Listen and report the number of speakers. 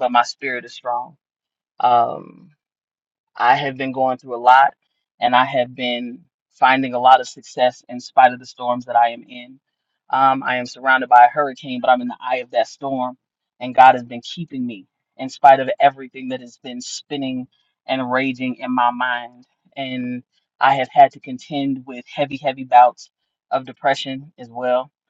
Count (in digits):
1